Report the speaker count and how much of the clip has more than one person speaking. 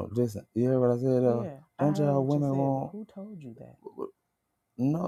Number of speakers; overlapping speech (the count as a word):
two, about 26%